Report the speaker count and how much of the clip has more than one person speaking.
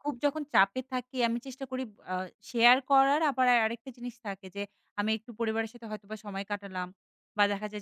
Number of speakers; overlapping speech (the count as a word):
one, no overlap